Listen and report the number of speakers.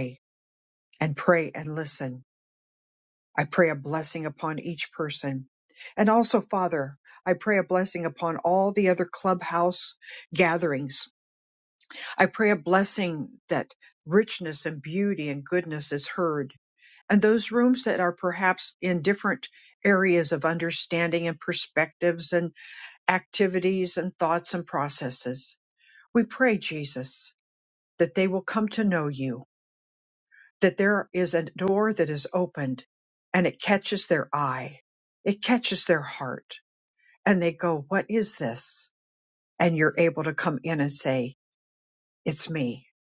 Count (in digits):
1